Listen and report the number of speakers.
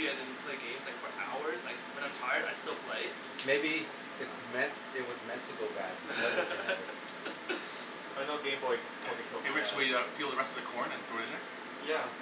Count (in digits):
4